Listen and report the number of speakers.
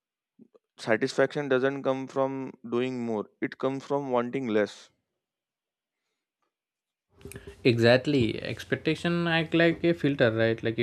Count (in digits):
2